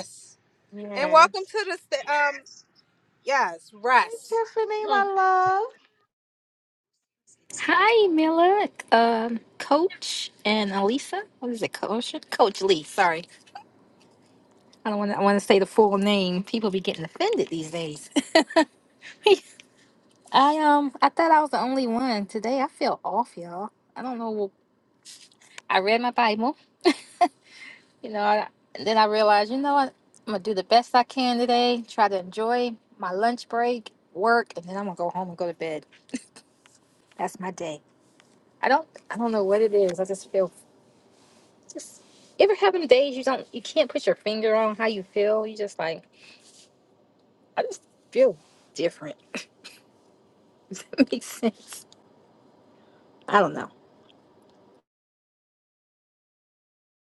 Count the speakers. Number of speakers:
three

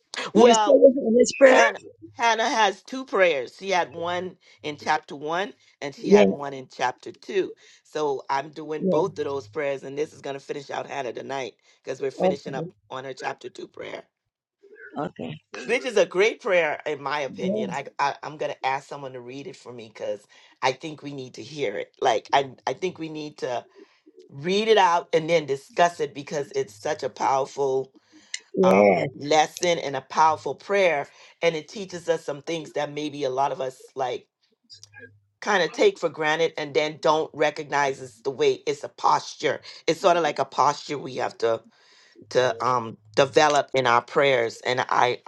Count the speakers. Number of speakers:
two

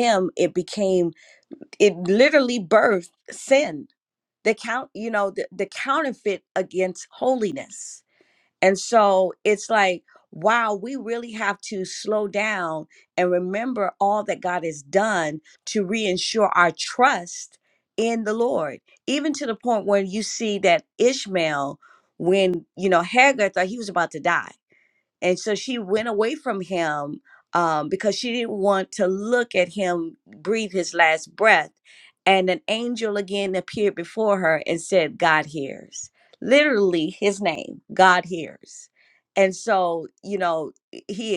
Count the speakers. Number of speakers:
one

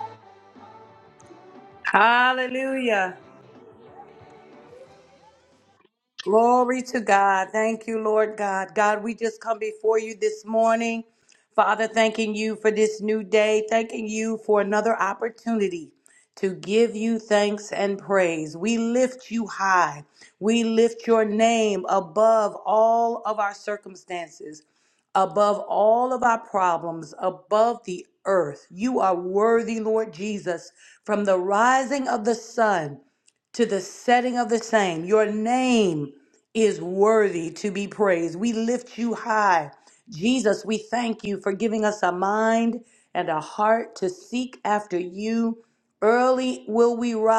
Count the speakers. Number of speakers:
one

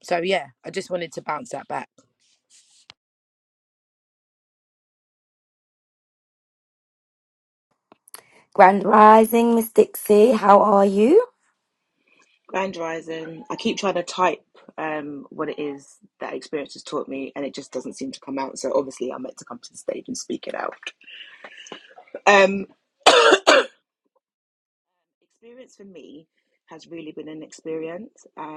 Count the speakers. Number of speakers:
three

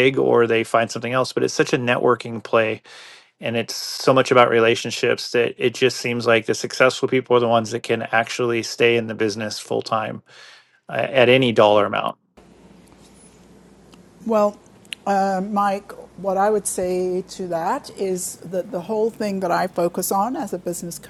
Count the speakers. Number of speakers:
two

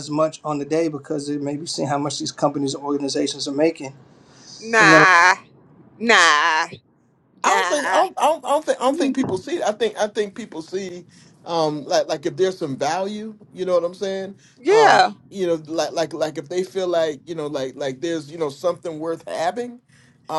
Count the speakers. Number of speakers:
three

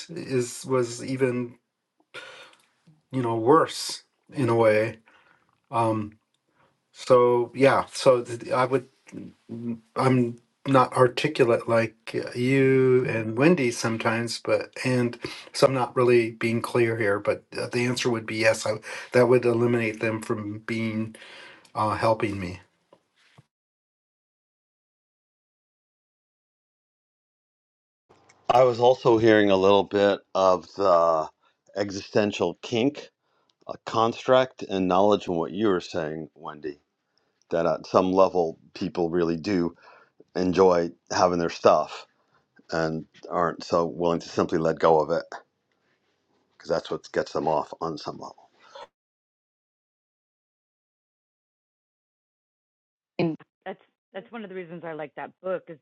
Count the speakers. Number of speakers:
three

